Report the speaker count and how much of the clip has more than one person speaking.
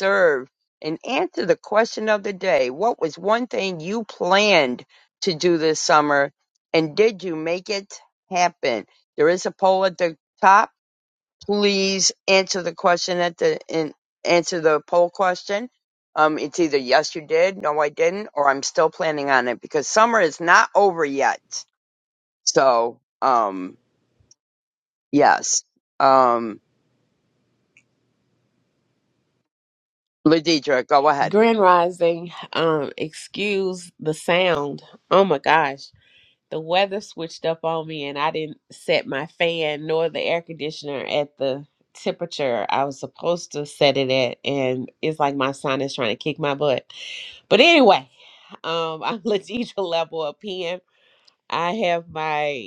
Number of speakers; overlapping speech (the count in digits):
2, under 1%